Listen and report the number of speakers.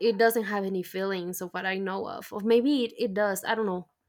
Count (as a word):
one